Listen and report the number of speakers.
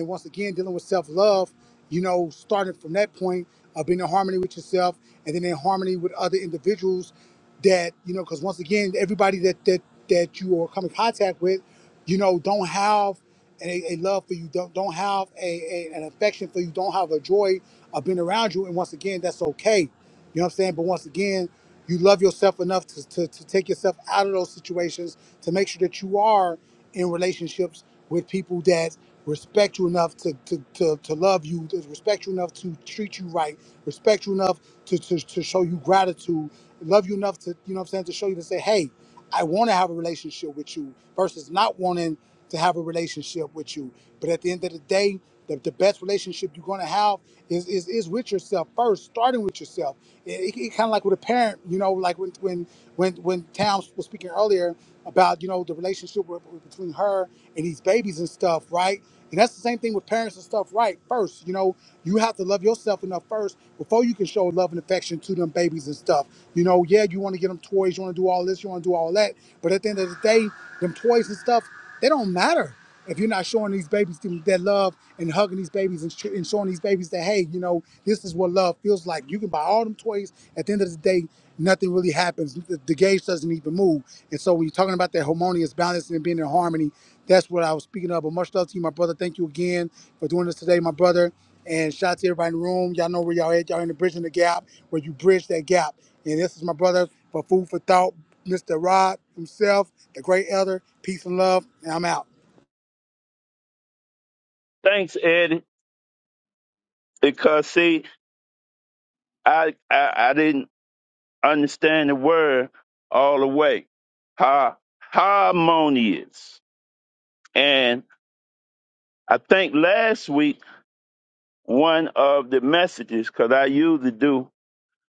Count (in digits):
2